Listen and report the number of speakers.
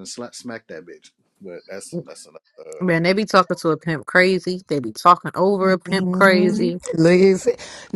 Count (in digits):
3